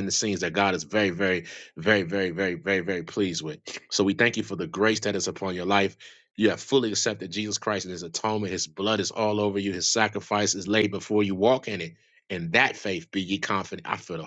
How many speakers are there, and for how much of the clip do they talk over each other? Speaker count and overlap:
one, no overlap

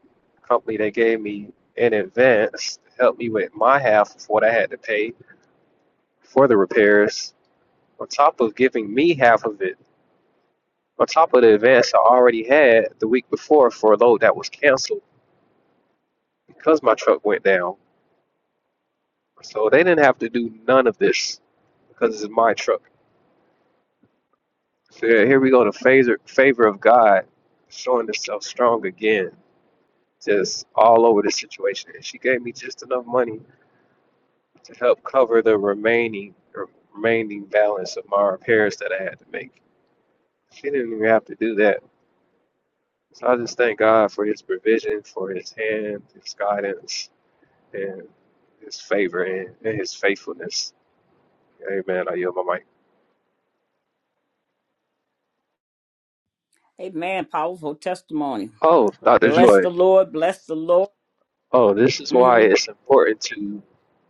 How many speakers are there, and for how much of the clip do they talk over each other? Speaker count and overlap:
two, about 1%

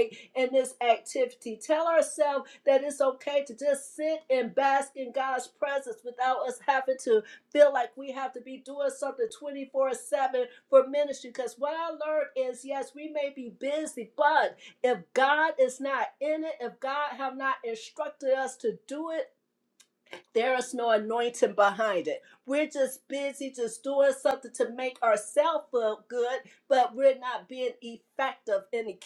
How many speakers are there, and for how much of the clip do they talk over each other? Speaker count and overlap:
one, no overlap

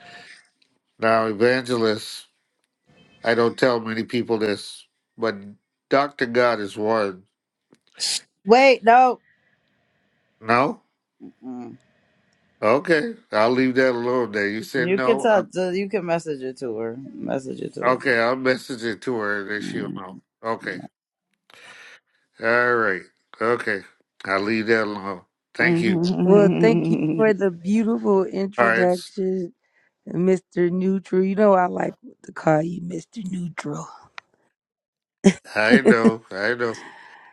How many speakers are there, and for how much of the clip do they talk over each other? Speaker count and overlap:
three, about 7%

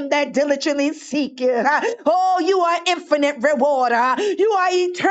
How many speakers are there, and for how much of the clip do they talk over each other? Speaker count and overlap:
one, no overlap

